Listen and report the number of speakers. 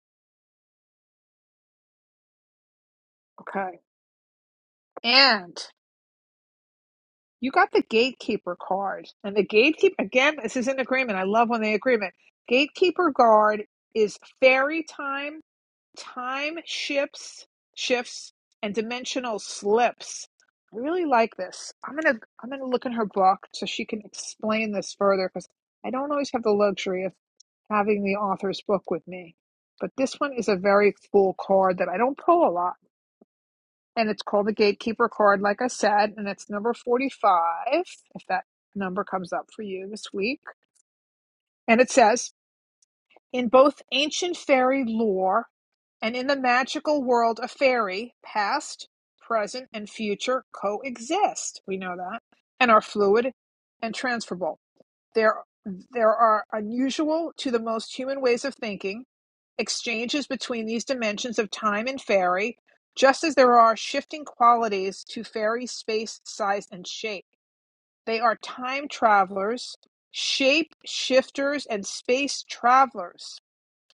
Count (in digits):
1